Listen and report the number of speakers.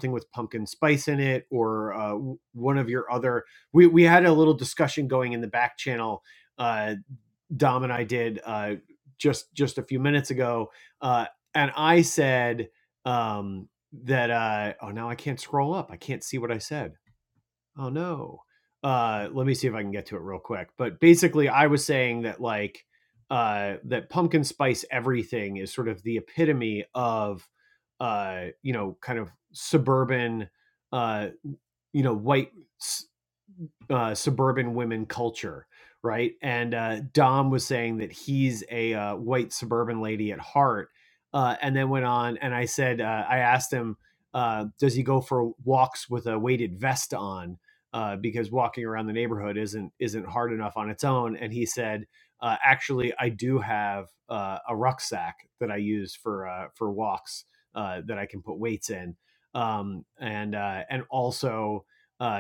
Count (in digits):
1